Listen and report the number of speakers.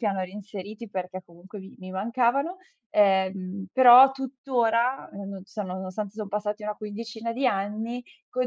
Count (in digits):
1